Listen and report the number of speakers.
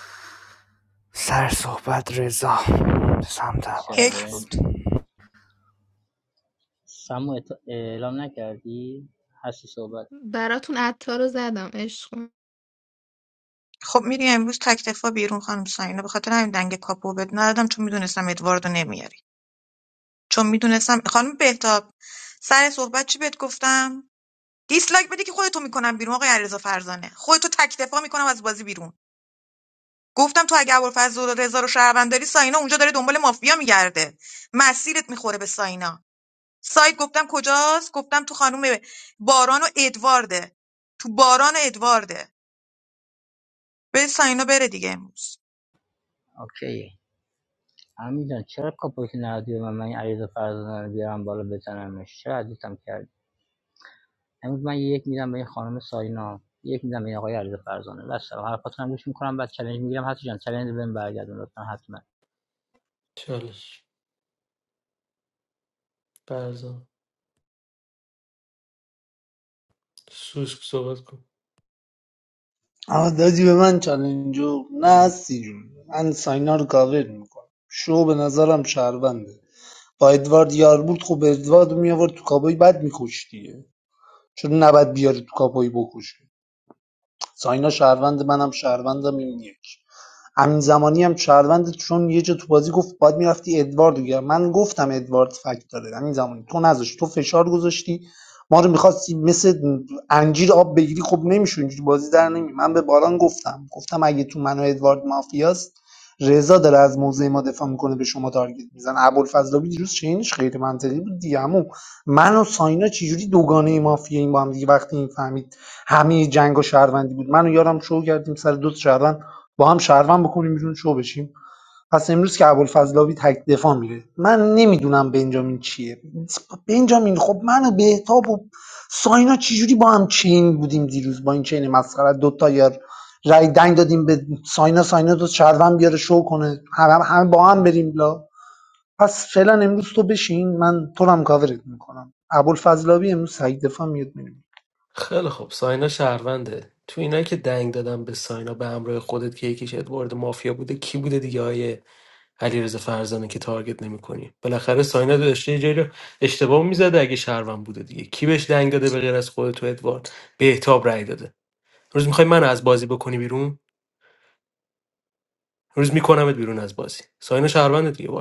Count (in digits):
6